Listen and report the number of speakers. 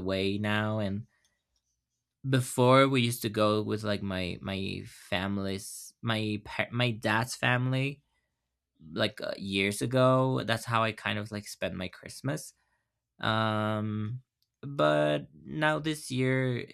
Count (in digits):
1